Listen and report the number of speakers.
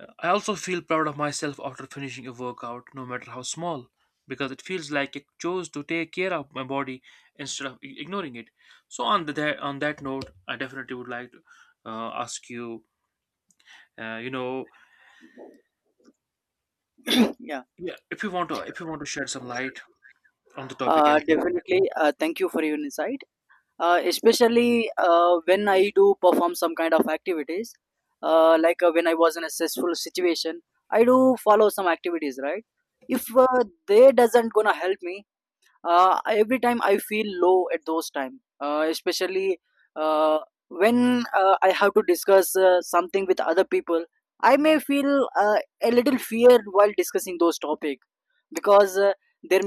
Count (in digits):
2